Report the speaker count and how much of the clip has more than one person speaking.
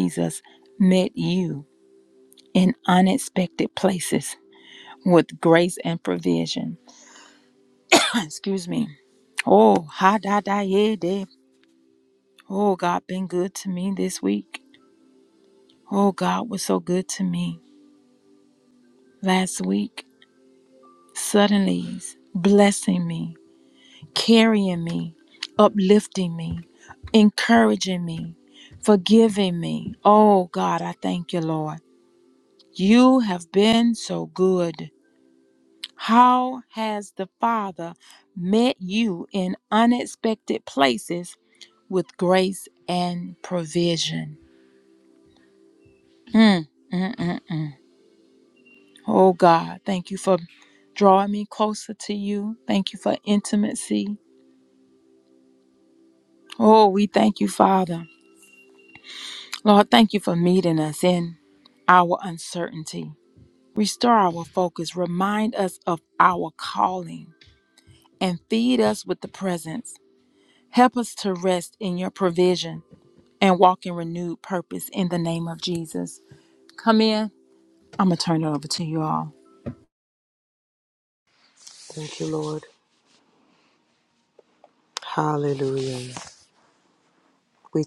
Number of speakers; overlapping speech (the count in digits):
2, no overlap